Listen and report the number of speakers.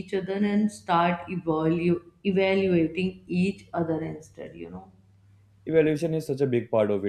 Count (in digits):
2